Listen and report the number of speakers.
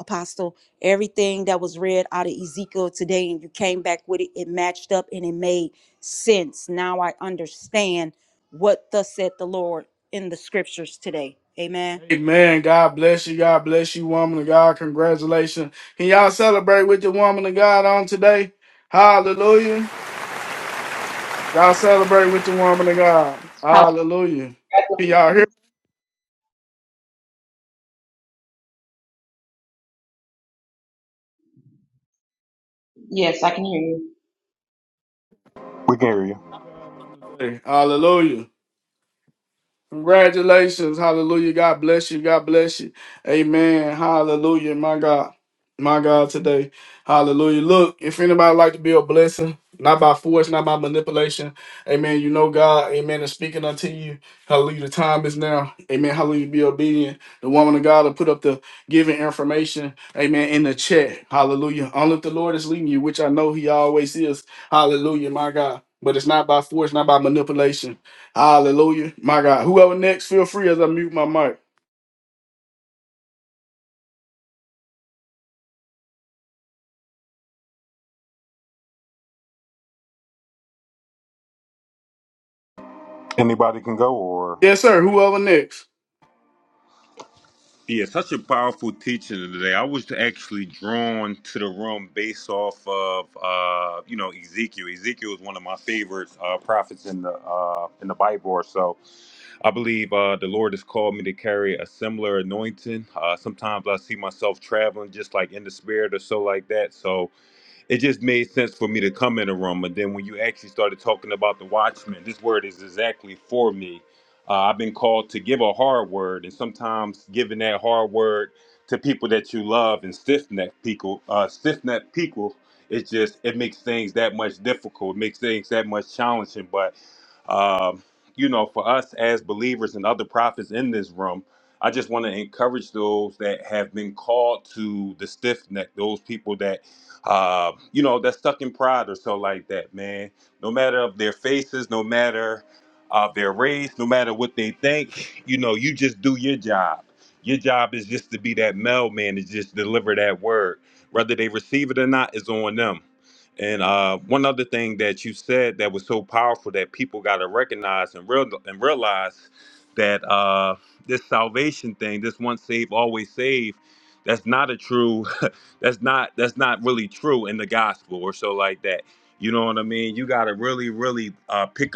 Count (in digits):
4